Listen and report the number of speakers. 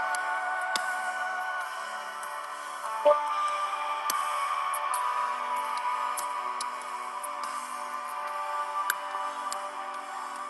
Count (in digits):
0